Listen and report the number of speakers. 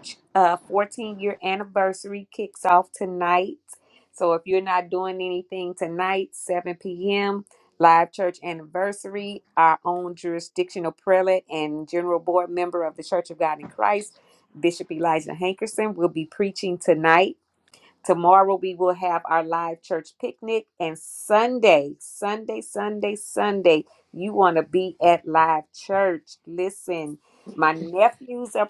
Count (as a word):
one